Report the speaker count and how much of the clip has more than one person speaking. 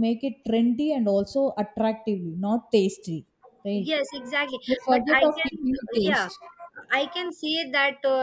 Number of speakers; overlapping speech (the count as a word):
two, about 18%